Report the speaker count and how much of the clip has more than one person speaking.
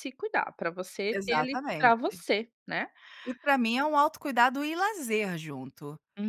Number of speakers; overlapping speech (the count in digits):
2, about 17%